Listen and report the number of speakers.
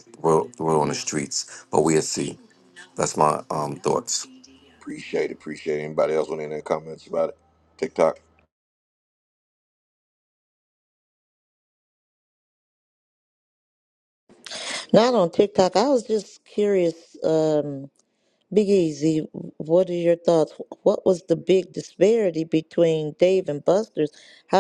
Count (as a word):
three